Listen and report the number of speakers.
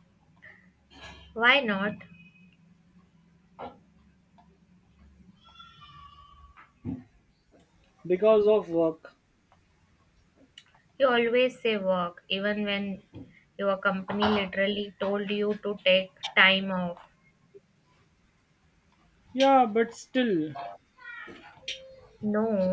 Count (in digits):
2